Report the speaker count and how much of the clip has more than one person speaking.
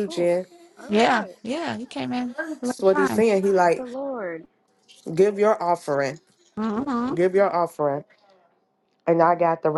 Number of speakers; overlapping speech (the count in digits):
3, about 18%